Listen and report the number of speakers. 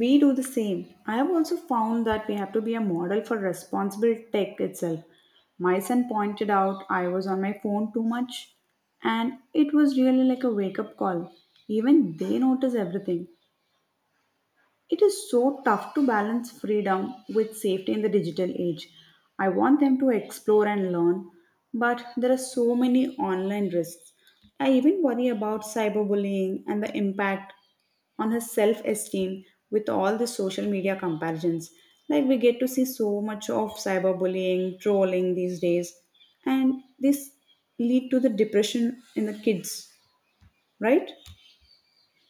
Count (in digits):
1